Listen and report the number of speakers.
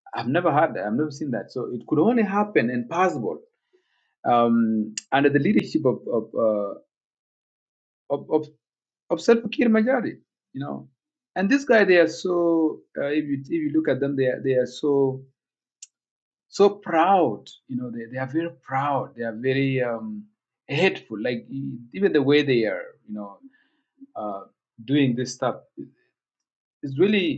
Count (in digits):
1